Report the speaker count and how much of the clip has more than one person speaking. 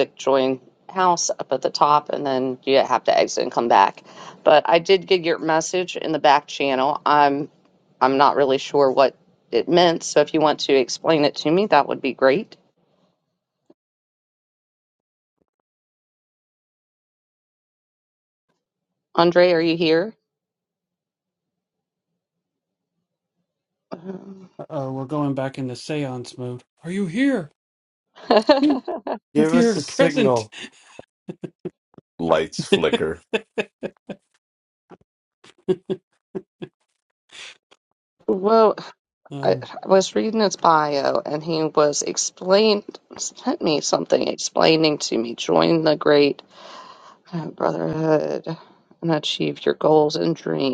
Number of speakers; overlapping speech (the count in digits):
3, about 2%